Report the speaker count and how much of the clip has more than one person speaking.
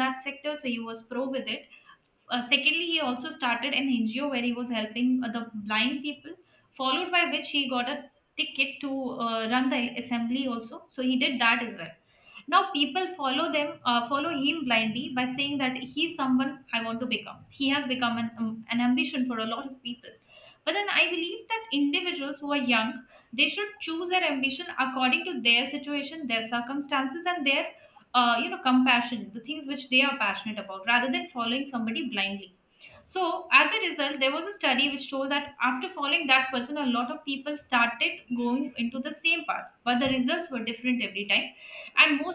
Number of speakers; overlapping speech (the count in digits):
1, no overlap